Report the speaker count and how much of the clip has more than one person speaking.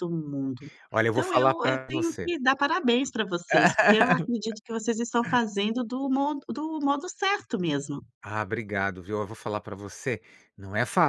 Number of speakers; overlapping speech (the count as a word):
two, about 10%